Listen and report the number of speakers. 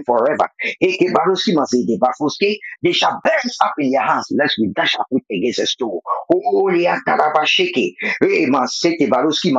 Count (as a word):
one